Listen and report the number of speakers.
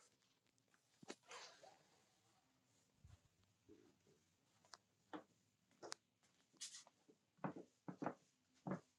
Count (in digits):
0